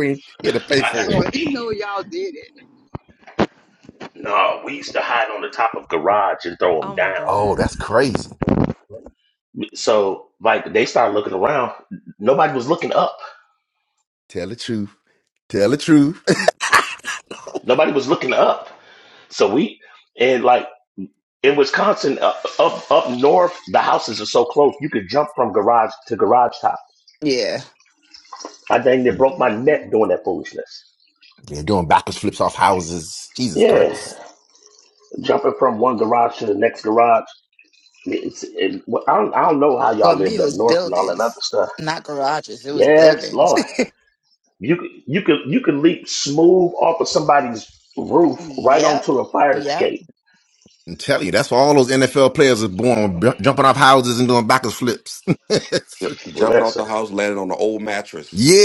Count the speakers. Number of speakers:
5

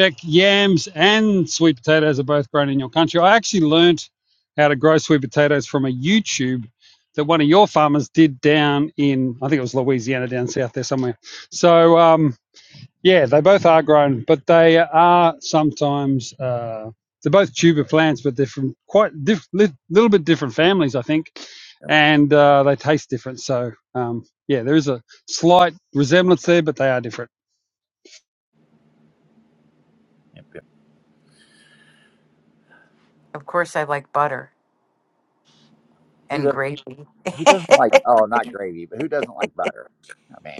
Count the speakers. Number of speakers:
3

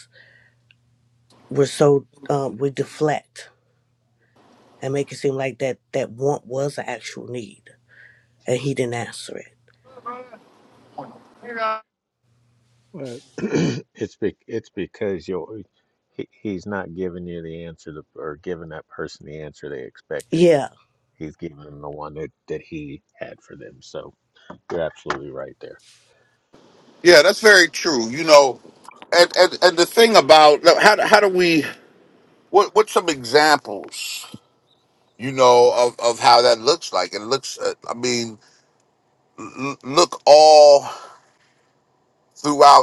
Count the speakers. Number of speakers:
3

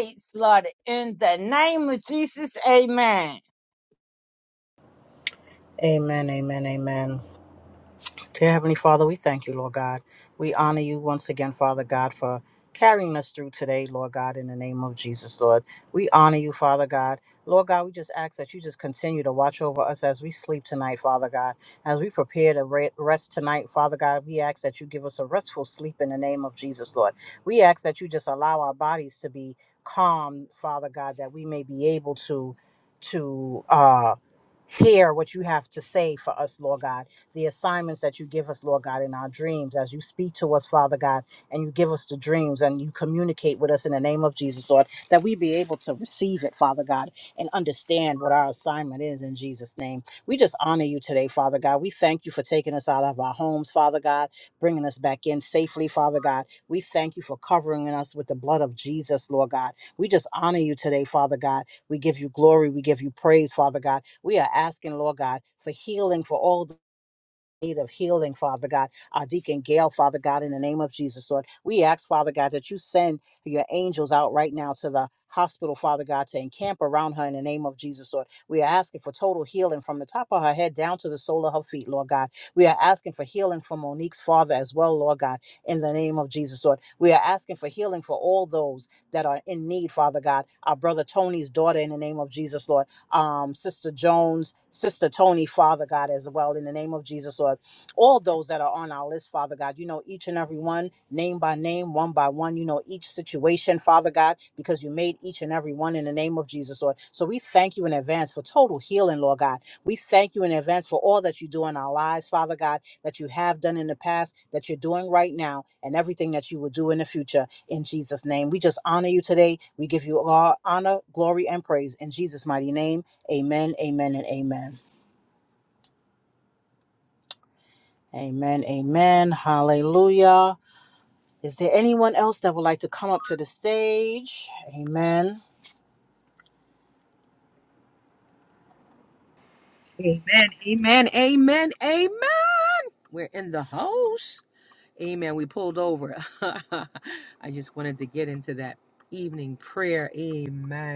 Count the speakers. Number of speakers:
3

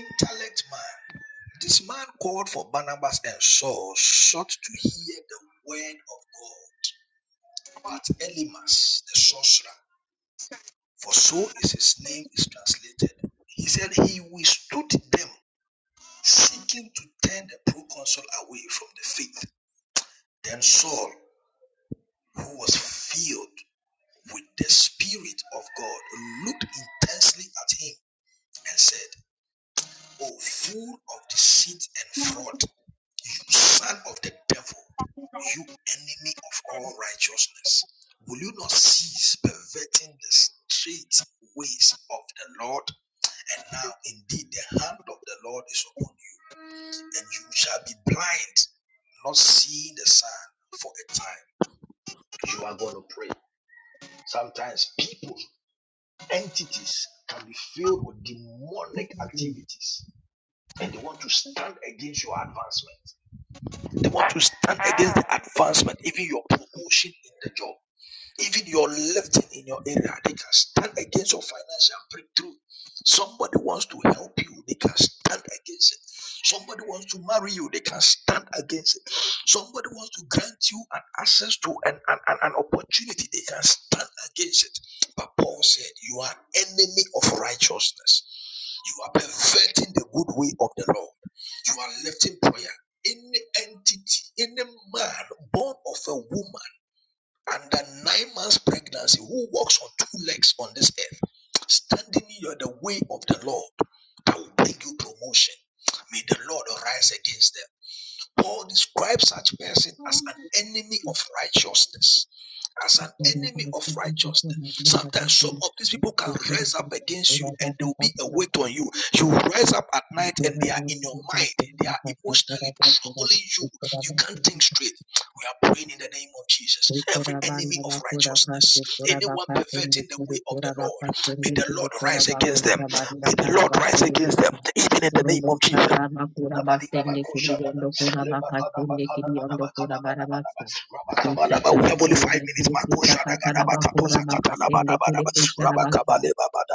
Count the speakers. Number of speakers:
2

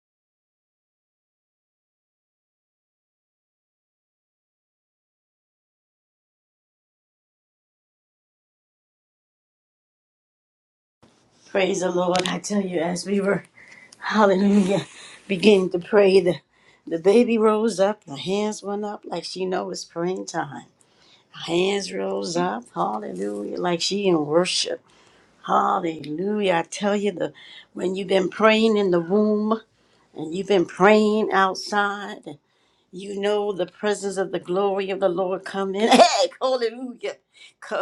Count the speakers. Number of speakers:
1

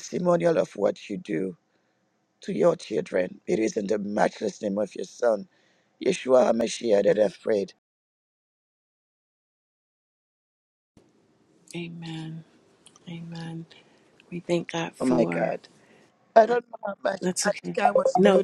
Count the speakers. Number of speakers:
2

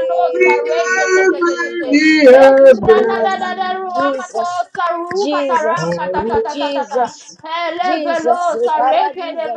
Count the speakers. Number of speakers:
3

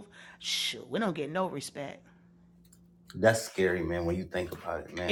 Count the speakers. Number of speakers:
2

